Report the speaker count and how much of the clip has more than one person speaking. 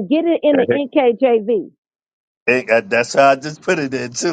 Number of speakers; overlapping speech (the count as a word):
two, about 6%